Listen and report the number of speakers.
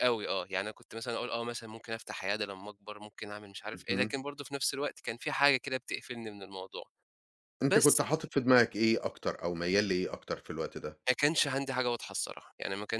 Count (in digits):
2